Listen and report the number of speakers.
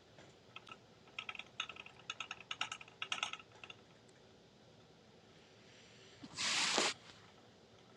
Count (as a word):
zero